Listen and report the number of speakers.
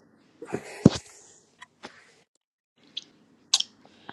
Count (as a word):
zero